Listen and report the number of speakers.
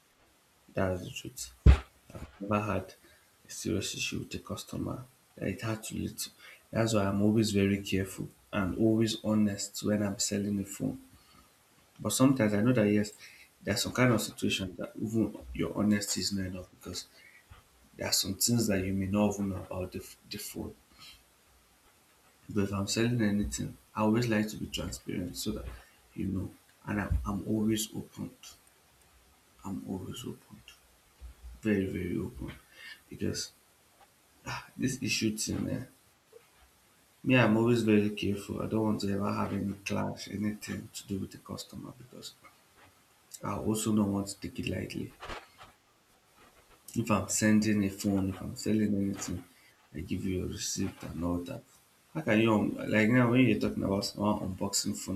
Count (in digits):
1